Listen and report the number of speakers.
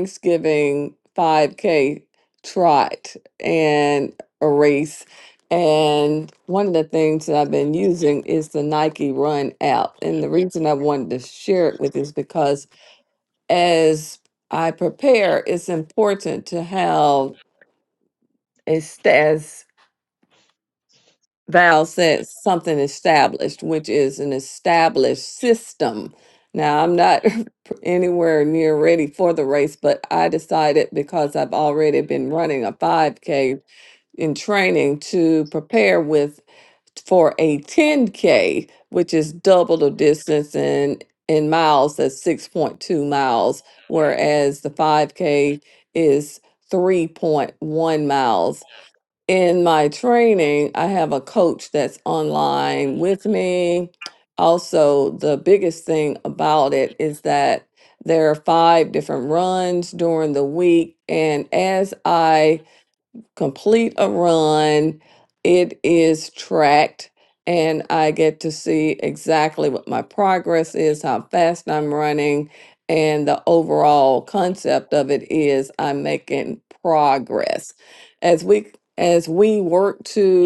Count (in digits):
1